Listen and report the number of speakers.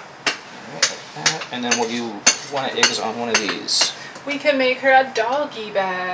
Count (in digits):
2